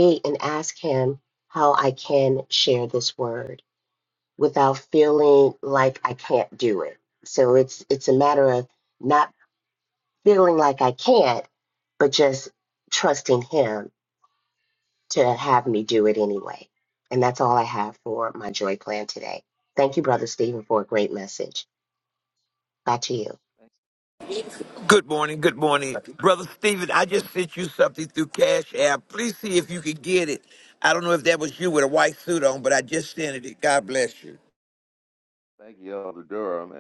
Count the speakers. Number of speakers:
three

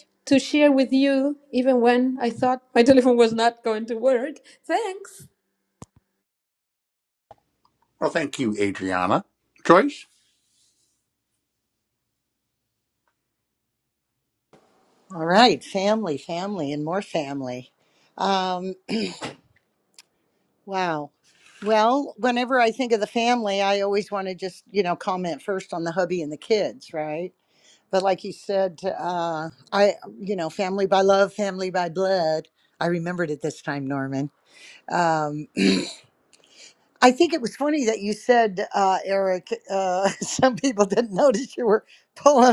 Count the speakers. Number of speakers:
three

